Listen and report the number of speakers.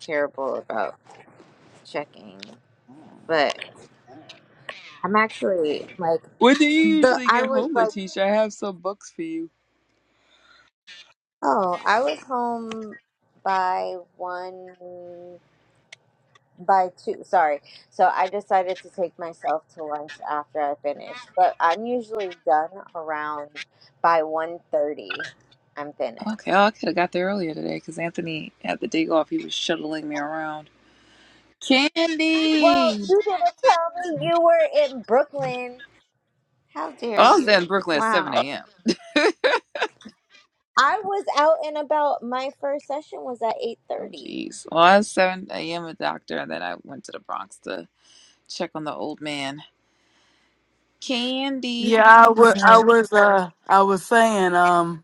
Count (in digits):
3